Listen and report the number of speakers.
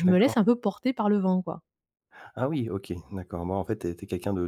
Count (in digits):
2